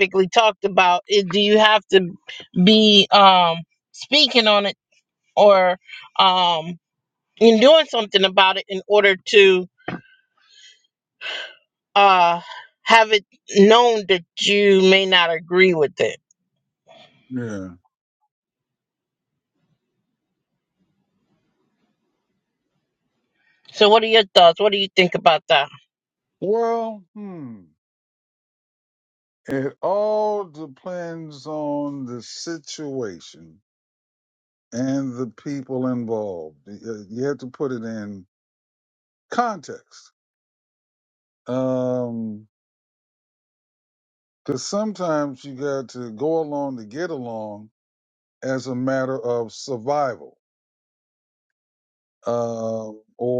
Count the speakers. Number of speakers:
2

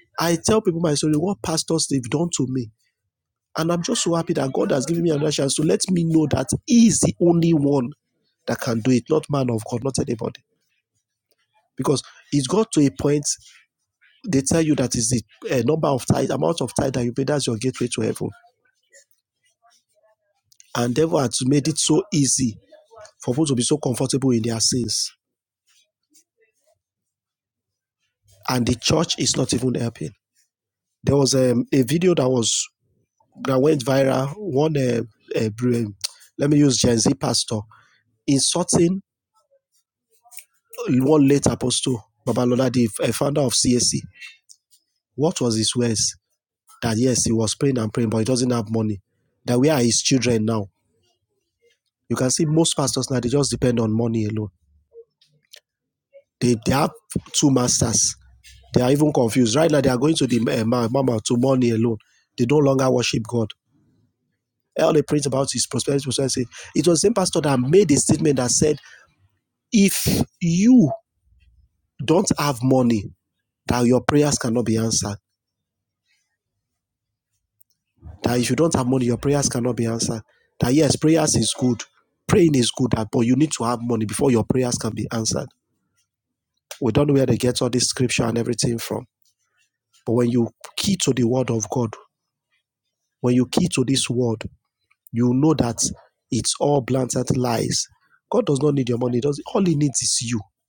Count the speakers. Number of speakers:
1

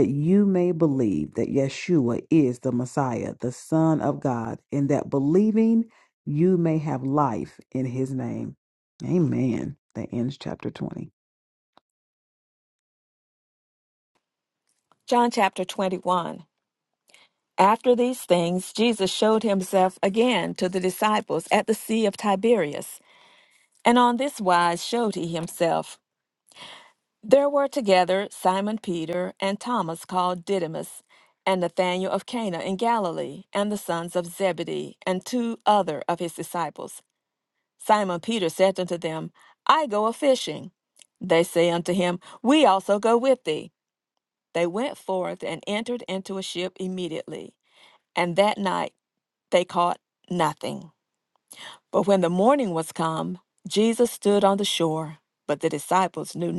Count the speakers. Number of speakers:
2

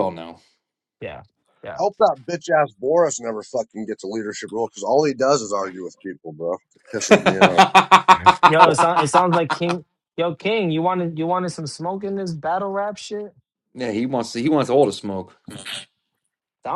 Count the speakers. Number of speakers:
3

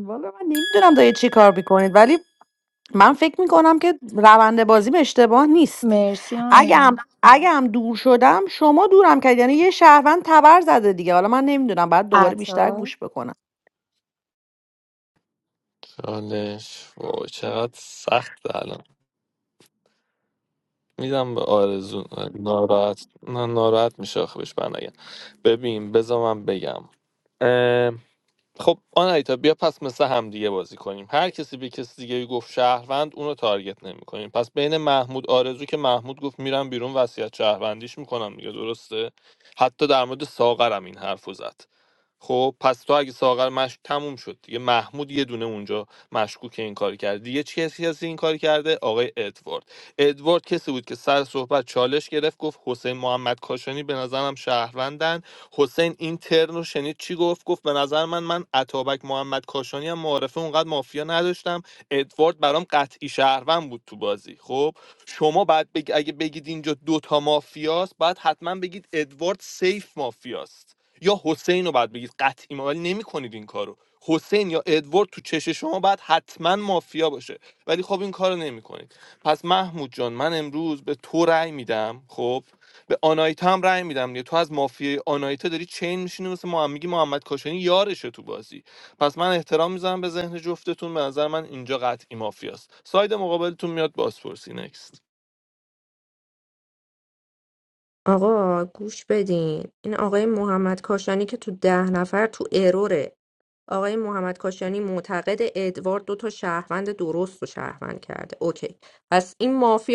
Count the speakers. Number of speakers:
4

